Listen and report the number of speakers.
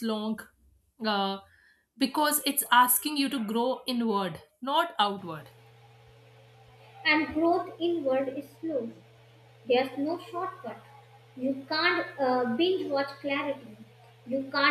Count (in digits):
2